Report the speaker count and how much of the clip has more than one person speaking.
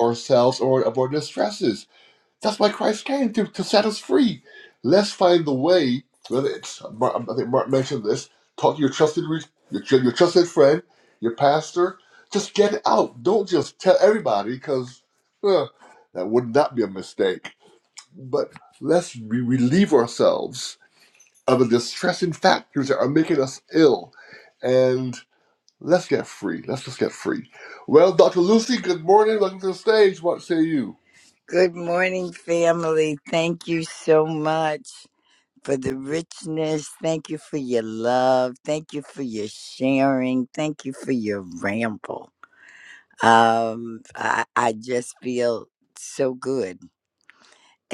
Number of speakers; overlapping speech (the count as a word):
two, no overlap